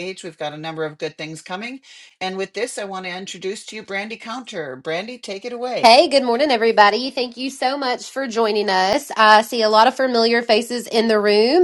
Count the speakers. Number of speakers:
2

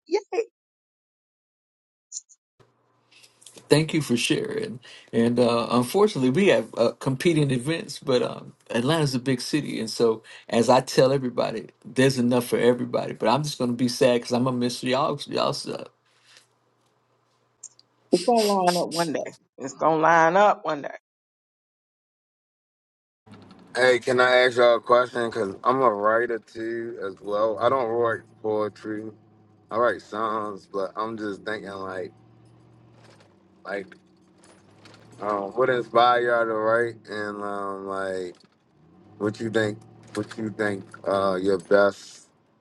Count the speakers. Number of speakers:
3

